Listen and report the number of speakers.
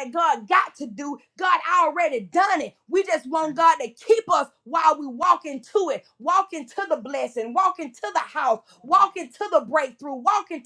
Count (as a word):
one